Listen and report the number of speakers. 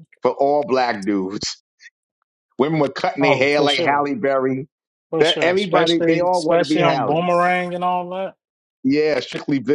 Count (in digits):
2